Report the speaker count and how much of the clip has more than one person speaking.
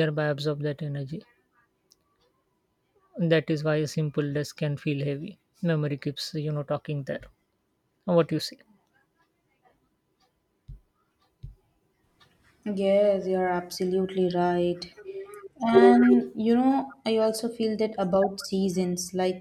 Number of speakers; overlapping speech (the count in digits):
2, no overlap